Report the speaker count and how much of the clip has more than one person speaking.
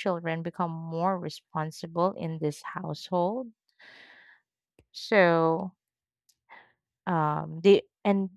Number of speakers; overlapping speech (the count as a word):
one, no overlap